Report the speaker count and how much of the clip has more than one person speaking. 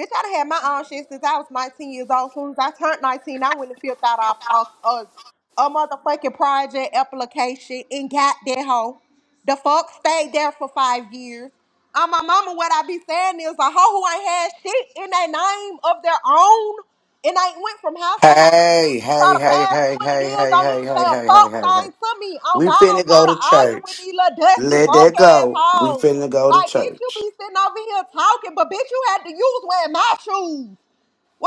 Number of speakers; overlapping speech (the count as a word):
two, about 21%